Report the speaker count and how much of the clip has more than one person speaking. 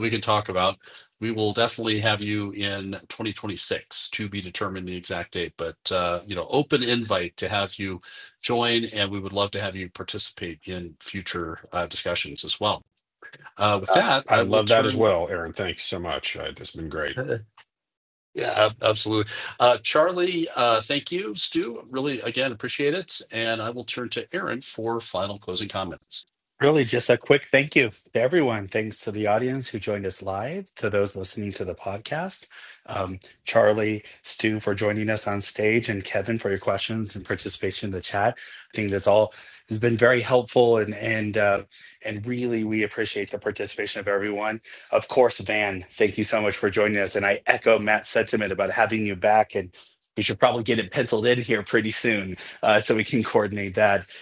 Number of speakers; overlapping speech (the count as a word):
three, about 2%